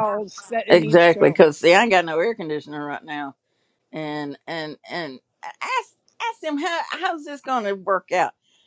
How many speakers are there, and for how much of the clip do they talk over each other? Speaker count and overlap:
2, about 8%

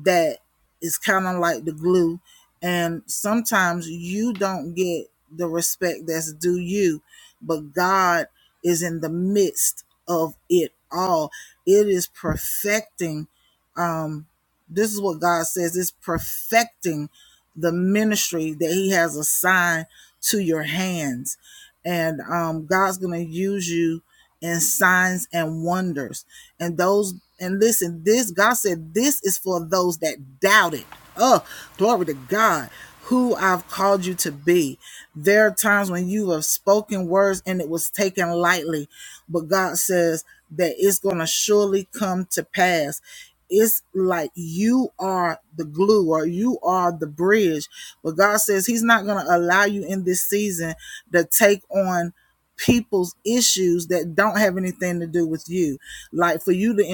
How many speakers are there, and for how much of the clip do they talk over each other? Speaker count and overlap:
1, no overlap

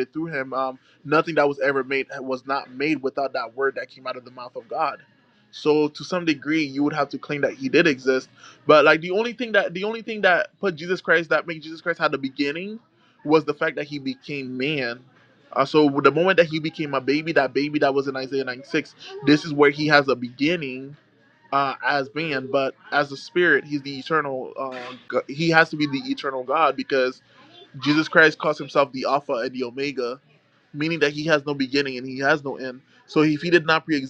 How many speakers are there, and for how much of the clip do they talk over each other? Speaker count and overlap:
1, no overlap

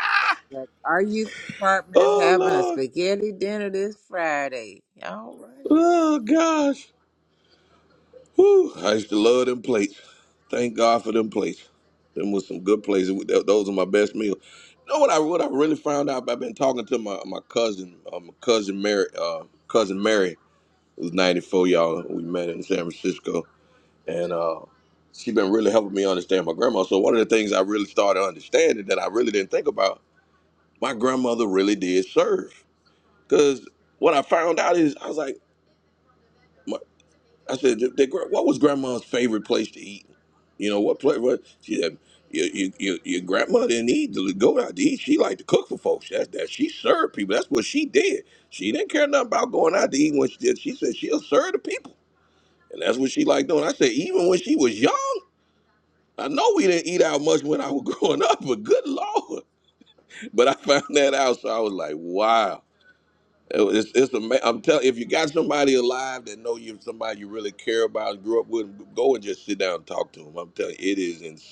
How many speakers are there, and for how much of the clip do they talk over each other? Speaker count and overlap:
2, about 1%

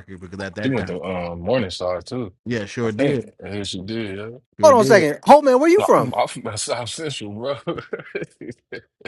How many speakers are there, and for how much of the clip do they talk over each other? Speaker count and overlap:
3, about 16%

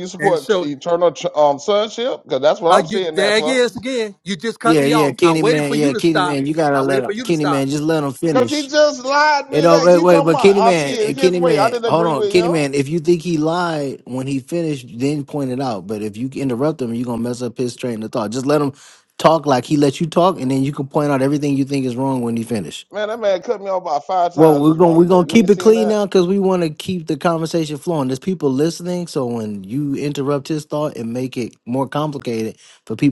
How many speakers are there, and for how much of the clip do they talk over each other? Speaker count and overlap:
3, about 28%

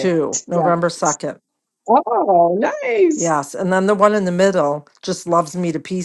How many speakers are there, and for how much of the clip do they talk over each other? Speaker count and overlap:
2, about 13%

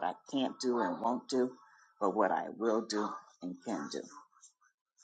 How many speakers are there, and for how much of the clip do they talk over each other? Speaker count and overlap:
1, no overlap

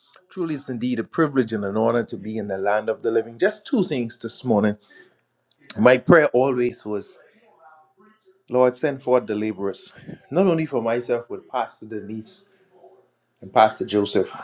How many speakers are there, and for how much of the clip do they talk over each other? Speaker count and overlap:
1, no overlap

